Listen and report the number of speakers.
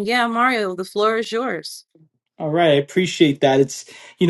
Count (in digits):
2